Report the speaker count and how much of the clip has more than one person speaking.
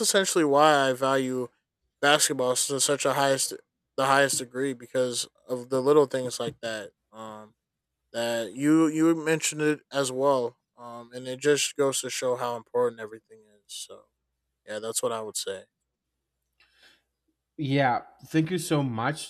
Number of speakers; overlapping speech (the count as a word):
two, no overlap